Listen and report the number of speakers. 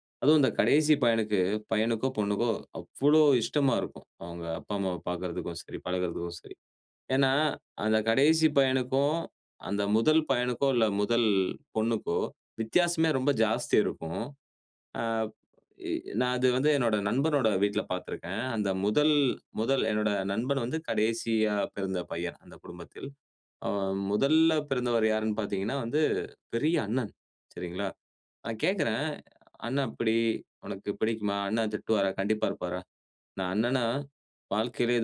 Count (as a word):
one